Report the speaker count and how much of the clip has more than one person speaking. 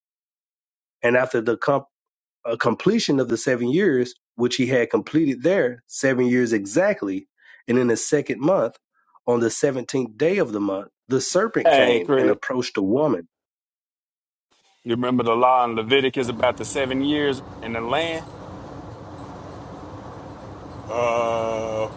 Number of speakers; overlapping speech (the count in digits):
3, about 3%